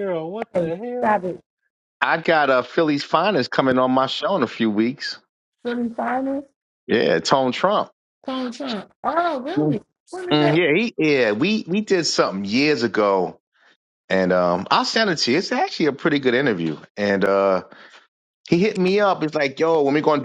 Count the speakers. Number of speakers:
3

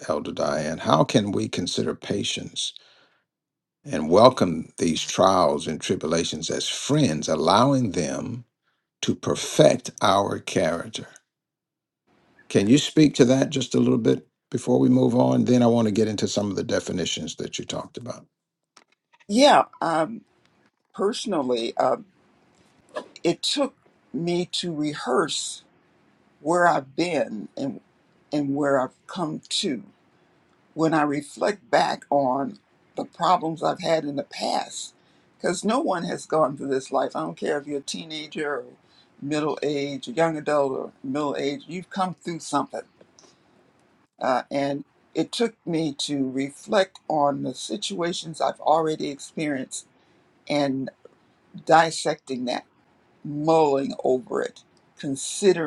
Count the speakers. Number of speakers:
2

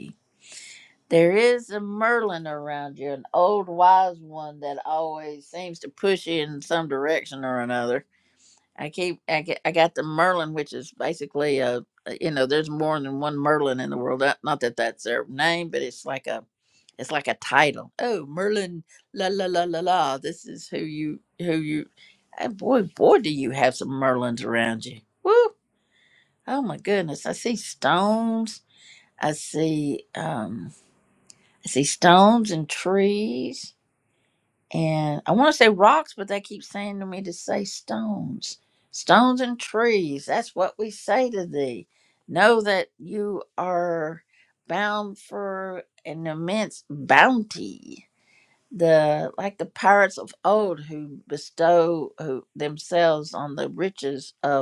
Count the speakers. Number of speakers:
1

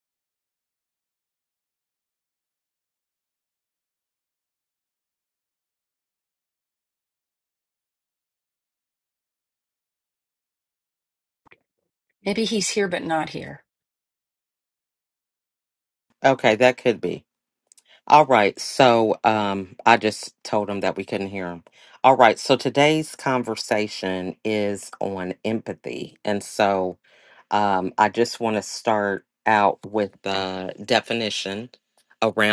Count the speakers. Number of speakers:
2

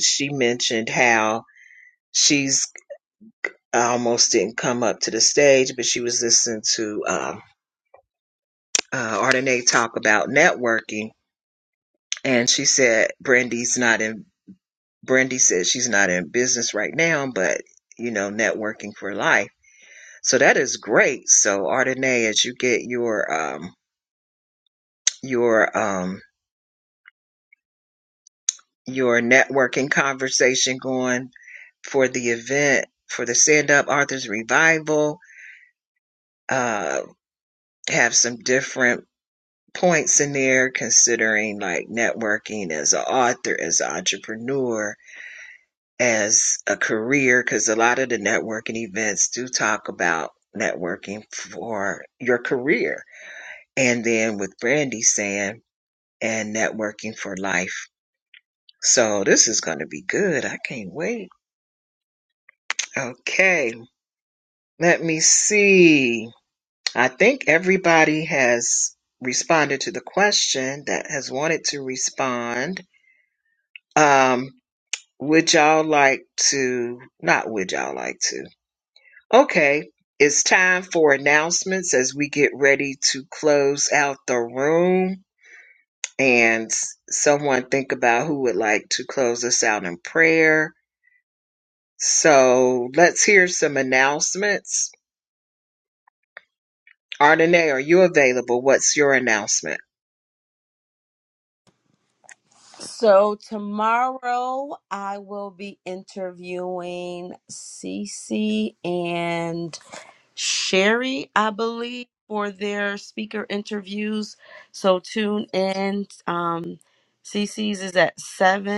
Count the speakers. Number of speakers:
2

